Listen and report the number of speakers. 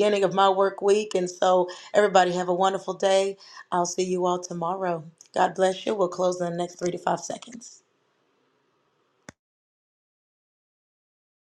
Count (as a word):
one